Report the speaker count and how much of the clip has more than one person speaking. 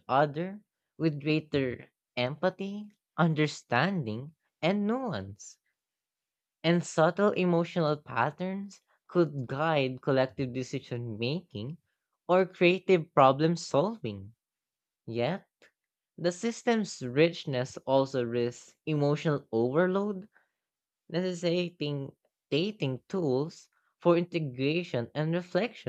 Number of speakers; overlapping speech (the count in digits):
1, no overlap